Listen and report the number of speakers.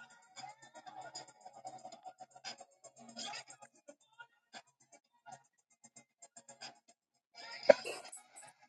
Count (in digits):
0